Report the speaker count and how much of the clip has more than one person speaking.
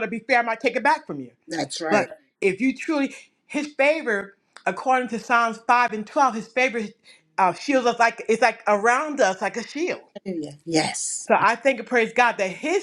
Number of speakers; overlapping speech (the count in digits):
2, about 1%